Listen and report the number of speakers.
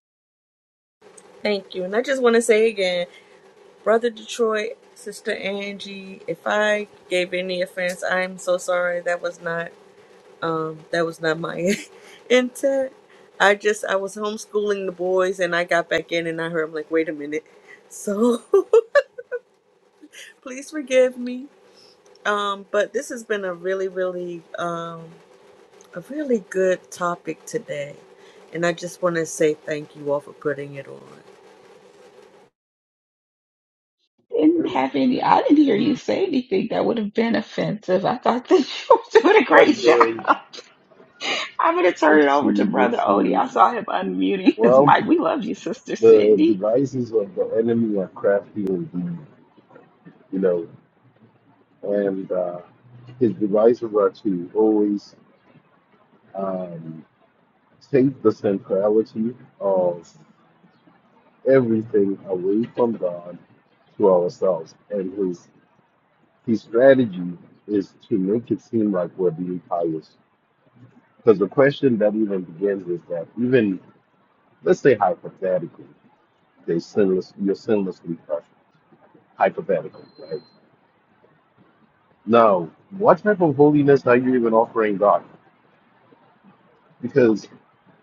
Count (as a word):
three